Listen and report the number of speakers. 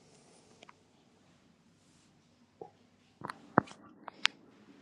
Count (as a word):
zero